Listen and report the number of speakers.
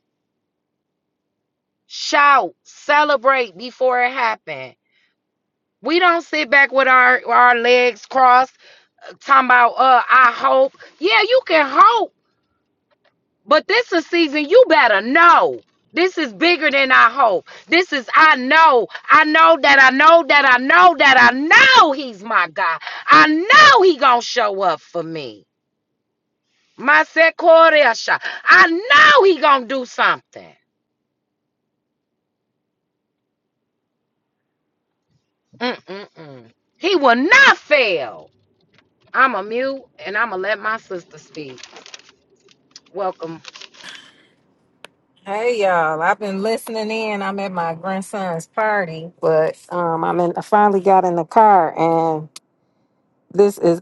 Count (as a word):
two